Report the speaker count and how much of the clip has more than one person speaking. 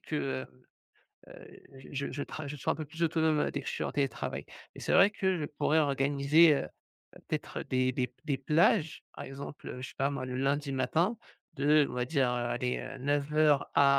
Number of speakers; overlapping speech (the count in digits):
1, no overlap